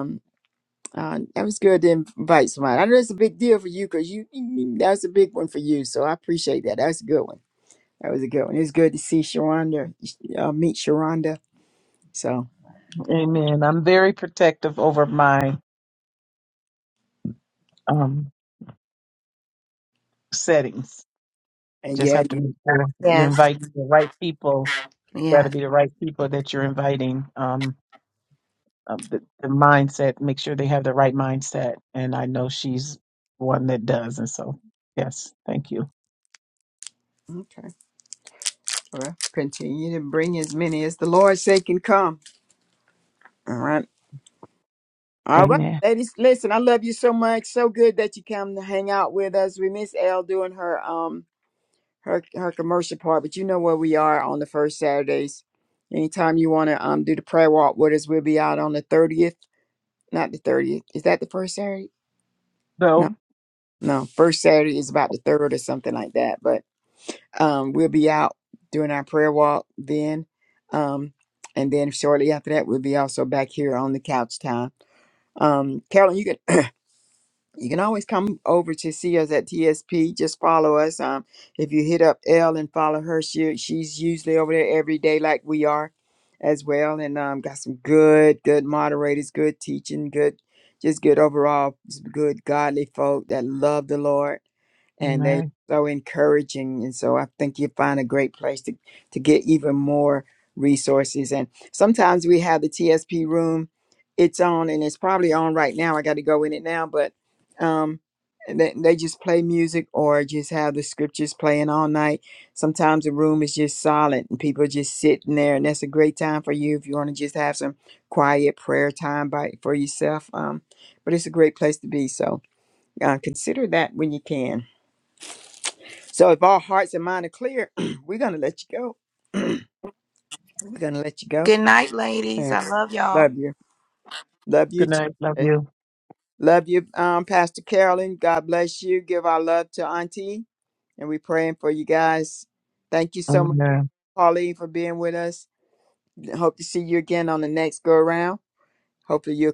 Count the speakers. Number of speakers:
3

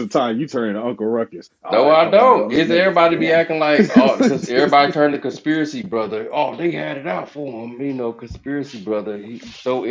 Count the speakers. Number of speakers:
2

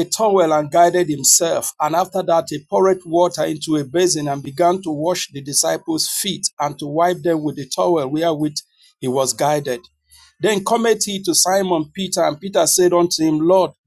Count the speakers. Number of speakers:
1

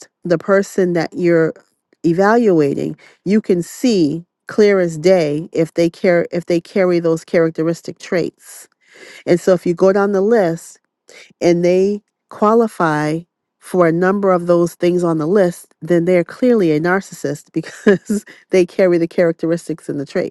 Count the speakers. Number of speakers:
1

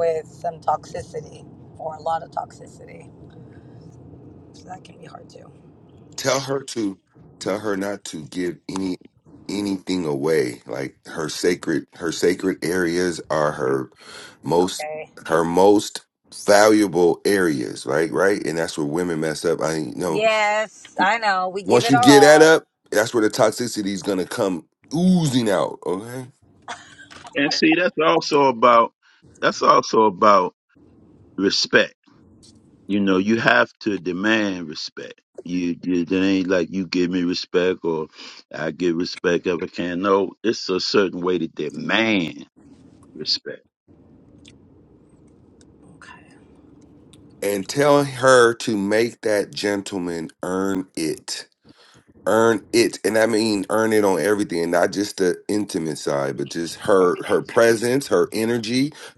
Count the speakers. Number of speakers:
3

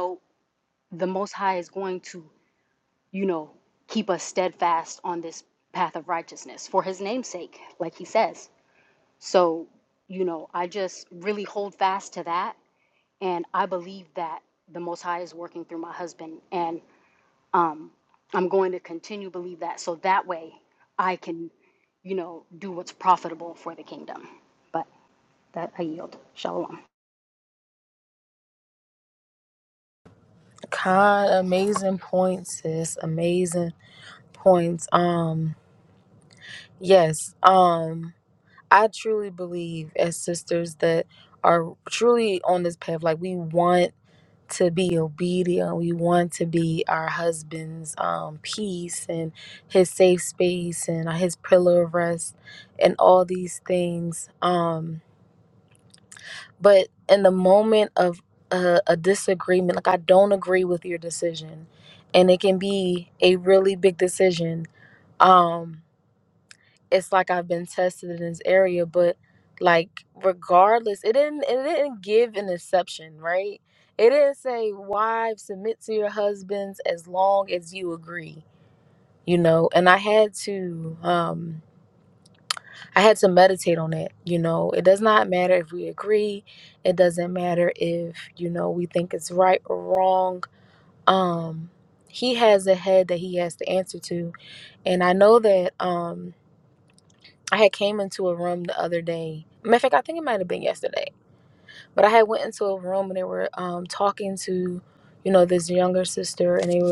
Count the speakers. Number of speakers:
2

